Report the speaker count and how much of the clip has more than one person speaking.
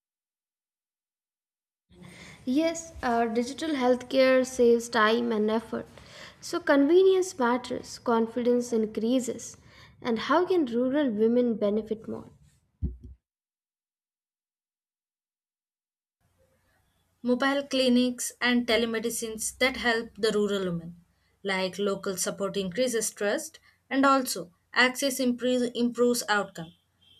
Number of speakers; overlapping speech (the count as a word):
two, no overlap